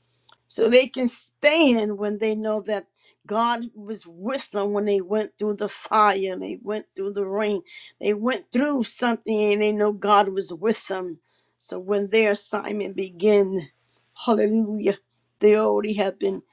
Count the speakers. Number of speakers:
one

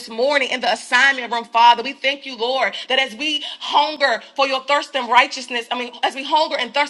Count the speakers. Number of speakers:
one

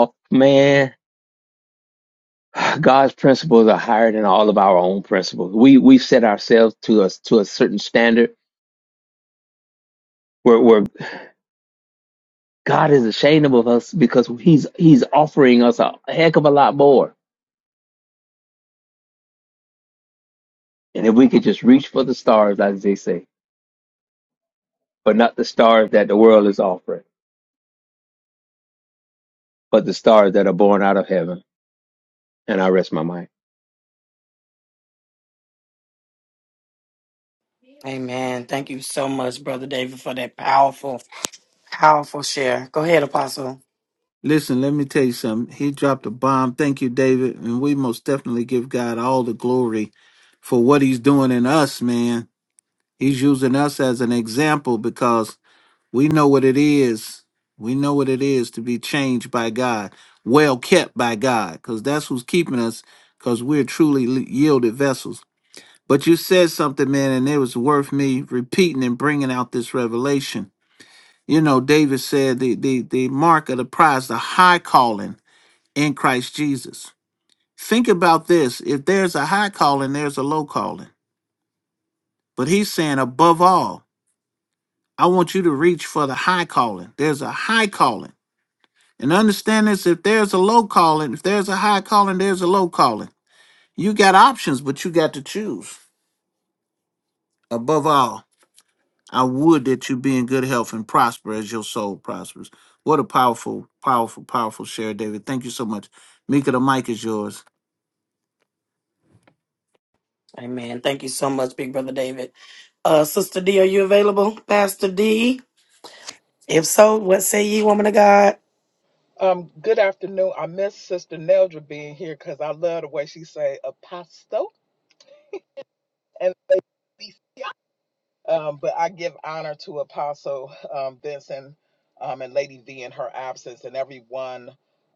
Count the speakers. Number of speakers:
four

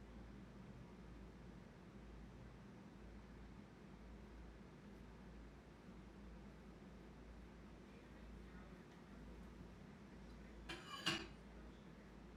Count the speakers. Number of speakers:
zero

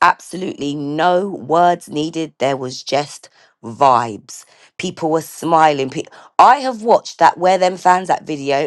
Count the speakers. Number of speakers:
one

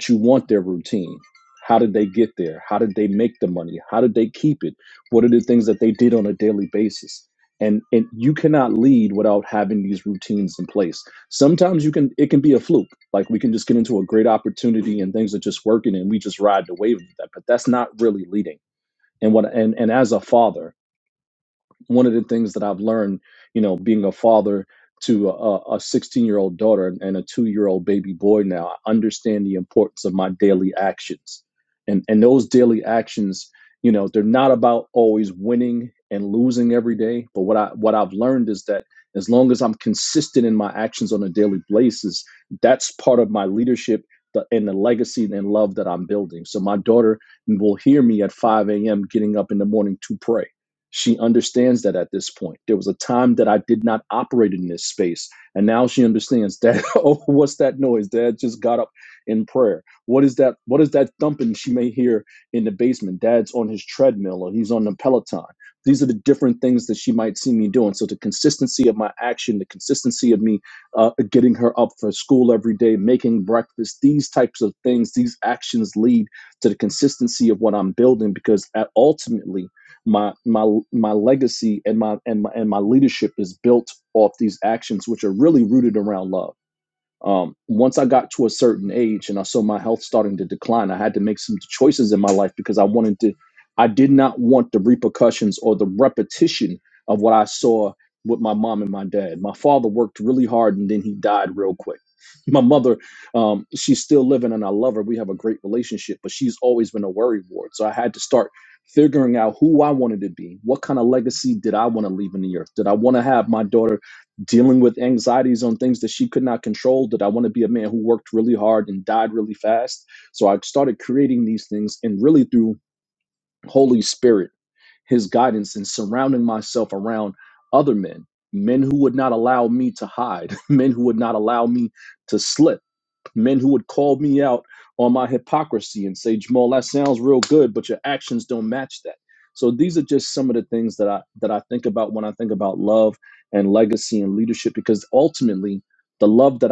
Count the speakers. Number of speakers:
one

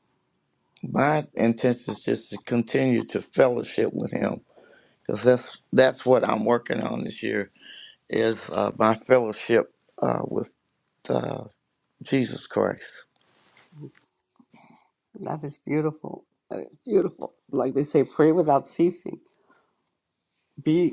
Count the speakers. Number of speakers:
two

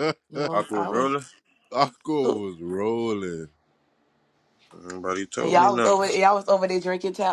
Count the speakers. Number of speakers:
three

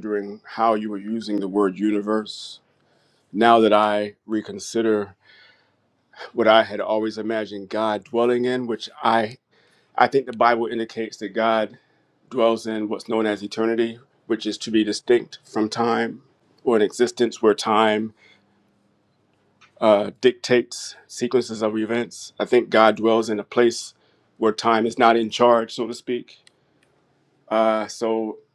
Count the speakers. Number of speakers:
one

